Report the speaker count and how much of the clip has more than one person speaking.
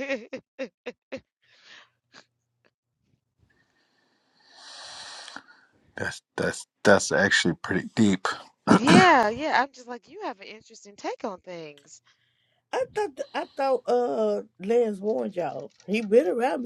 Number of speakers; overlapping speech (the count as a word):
three, no overlap